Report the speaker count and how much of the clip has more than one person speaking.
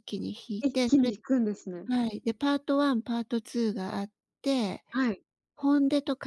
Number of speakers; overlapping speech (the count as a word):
two, about 8%